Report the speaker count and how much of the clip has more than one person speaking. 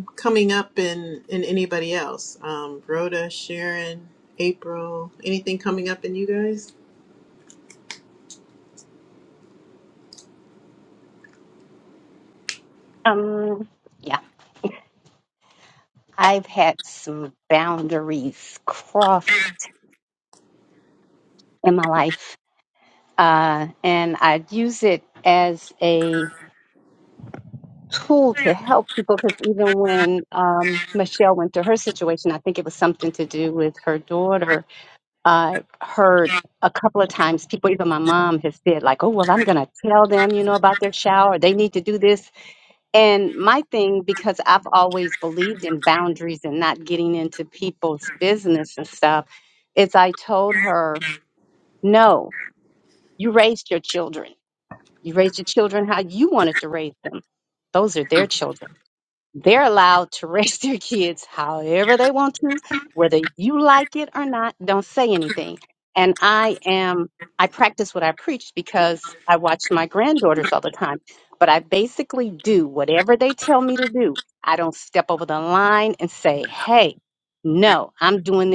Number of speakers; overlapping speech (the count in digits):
2, no overlap